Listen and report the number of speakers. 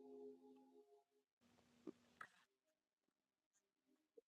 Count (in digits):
0